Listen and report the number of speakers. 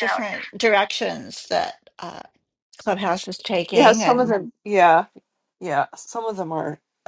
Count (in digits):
2